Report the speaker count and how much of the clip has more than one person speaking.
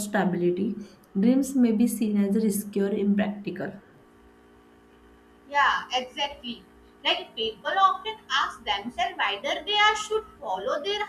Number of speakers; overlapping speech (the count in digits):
2, no overlap